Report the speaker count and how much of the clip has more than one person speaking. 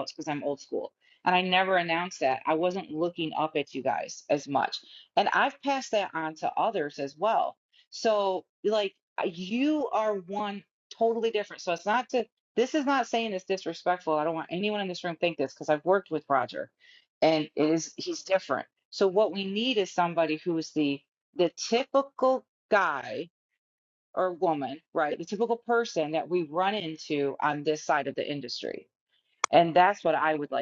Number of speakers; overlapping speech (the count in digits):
1, no overlap